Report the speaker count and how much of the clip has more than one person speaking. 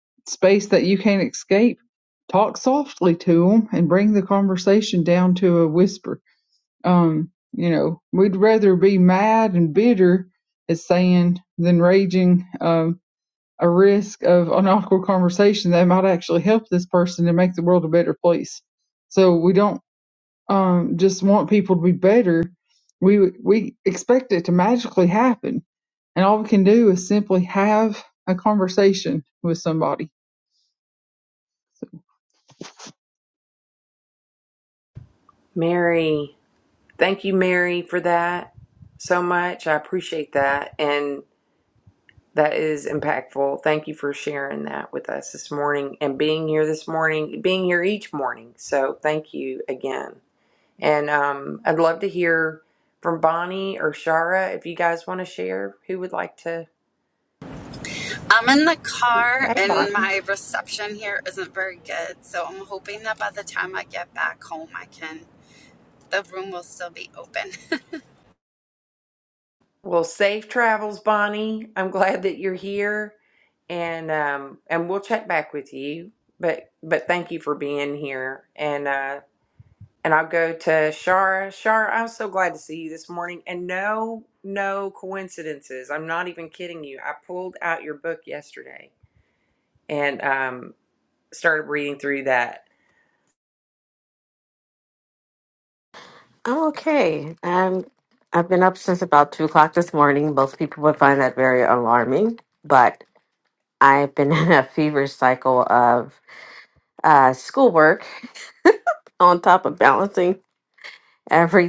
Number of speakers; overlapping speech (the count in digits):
4, under 1%